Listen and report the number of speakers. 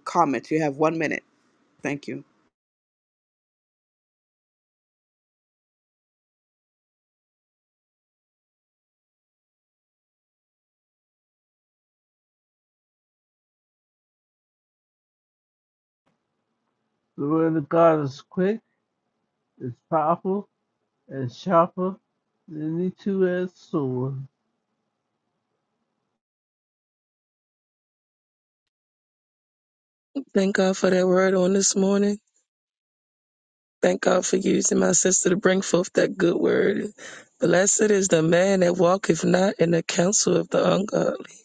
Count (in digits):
3